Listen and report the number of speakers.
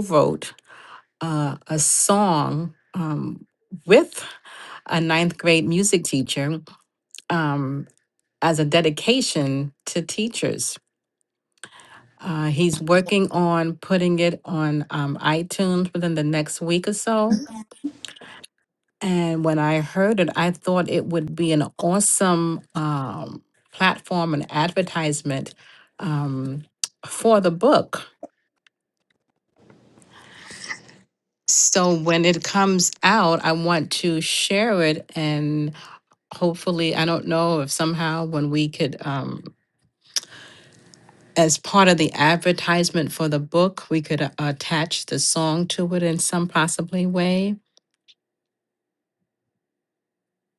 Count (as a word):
one